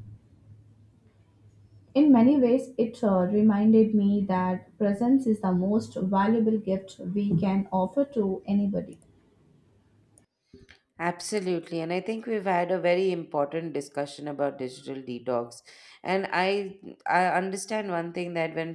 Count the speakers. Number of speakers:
2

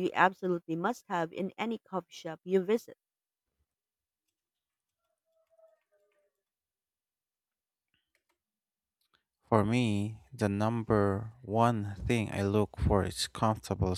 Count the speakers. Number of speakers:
2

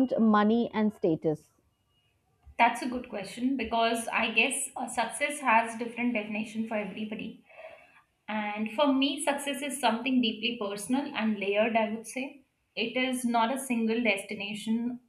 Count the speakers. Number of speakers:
2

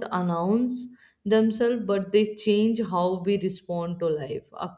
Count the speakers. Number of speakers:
1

